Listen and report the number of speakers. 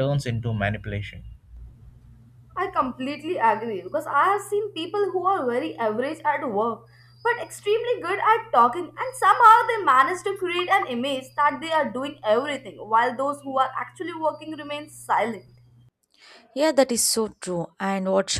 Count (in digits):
3